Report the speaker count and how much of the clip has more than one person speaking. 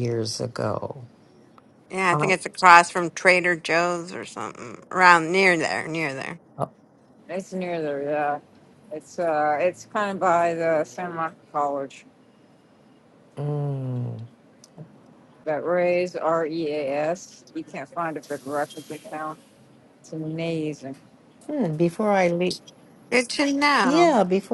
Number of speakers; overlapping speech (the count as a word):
three, about 2%